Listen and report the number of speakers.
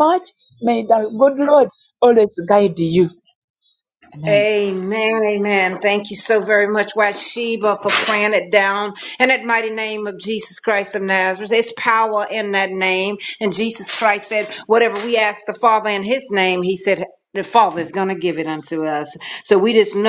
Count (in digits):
2